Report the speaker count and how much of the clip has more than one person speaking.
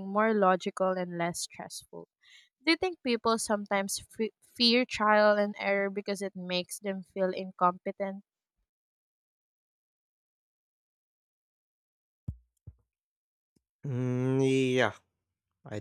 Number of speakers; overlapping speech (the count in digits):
2, no overlap